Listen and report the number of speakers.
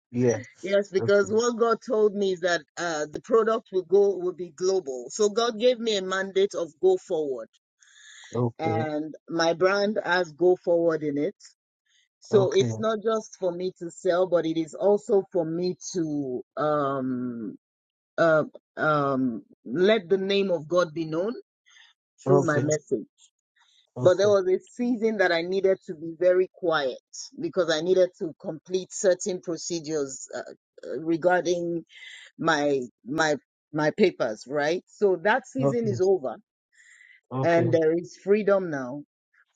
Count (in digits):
2